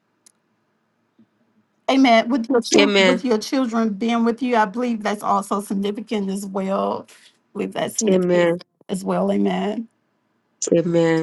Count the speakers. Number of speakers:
2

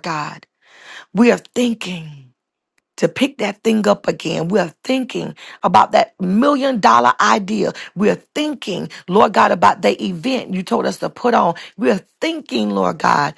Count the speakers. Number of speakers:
1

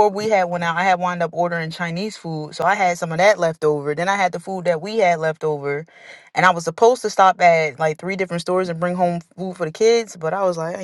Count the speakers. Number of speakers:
1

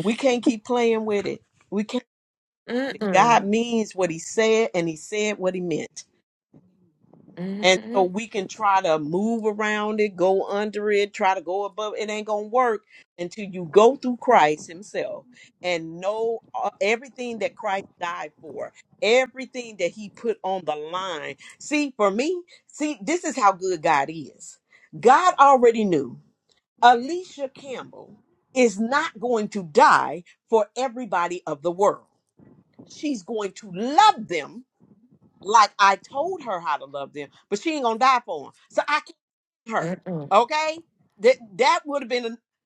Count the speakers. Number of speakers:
2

